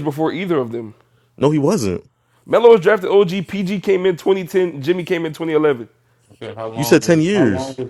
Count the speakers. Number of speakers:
3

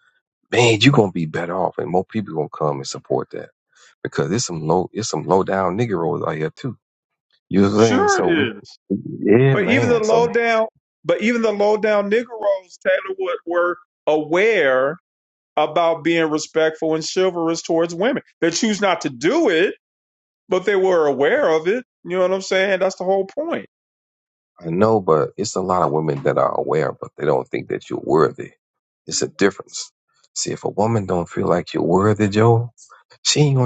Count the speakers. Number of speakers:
2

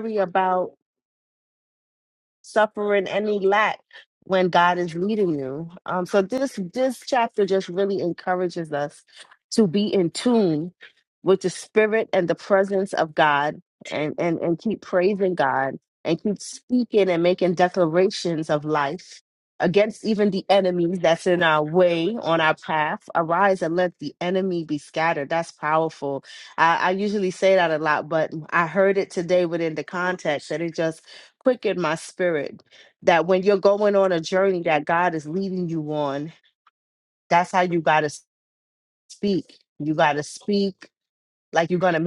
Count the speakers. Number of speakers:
1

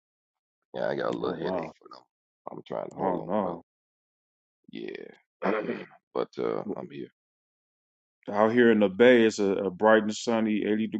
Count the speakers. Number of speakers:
2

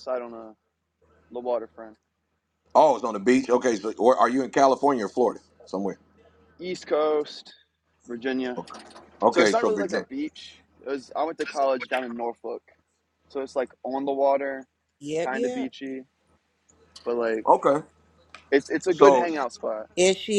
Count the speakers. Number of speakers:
3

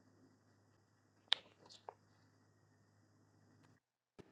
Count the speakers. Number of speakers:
0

